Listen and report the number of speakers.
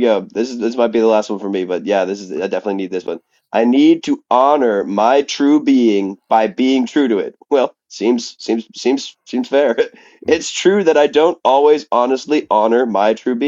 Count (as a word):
one